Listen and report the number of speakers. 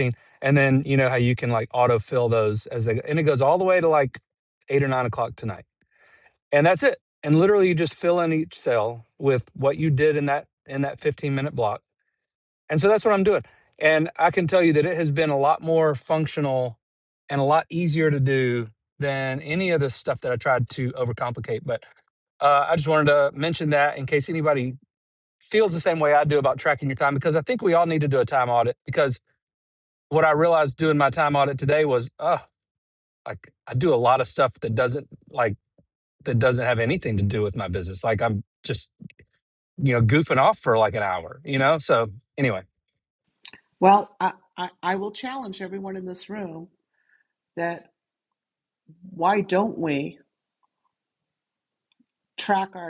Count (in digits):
2